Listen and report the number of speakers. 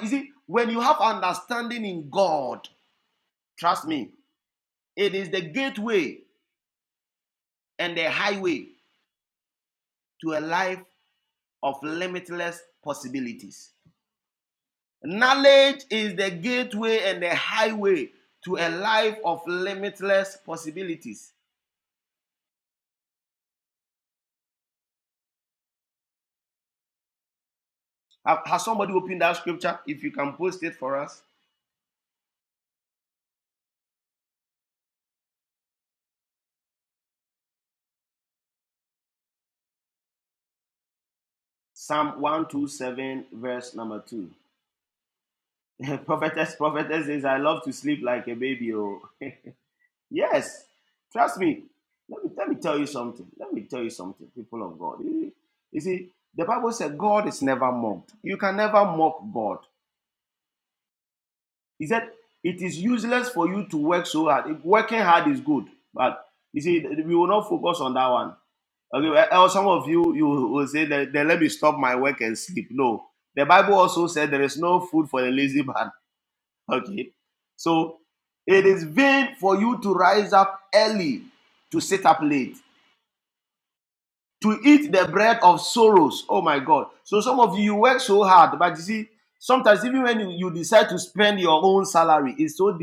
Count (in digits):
1